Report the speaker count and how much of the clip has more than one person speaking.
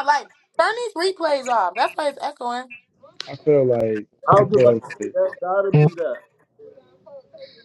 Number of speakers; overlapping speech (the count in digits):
3, about 10%